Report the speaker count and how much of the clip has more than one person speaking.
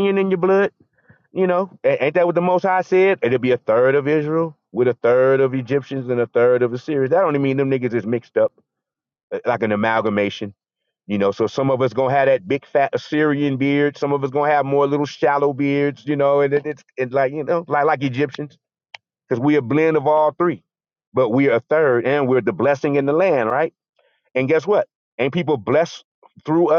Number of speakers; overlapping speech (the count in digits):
1, no overlap